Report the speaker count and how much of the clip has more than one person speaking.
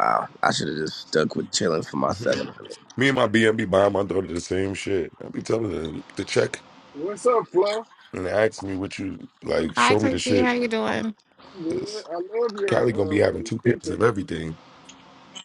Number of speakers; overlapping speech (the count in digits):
4, about 13%